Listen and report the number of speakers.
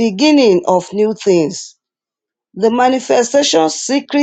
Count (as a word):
one